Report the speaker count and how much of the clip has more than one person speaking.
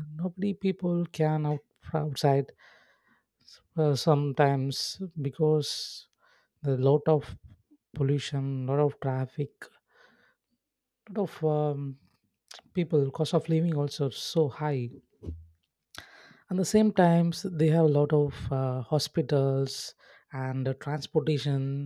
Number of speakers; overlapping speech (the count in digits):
1, no overlap